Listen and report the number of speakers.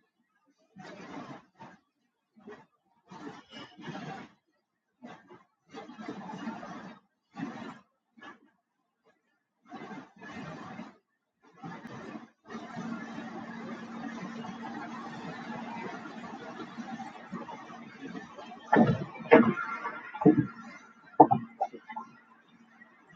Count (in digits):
0